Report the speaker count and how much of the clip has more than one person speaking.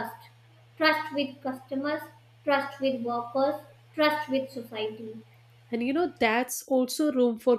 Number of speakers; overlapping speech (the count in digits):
2, no overlap